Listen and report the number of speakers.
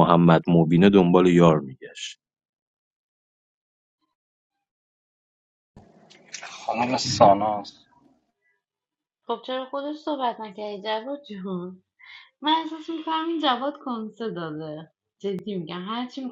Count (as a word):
three